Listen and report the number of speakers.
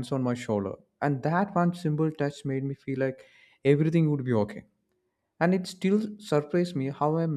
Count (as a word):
one